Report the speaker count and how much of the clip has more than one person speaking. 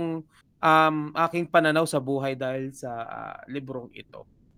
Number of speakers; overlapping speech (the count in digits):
1, no overlap